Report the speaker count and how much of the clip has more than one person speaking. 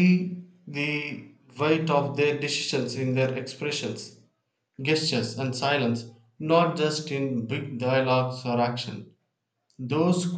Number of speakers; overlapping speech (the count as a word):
one, no overlap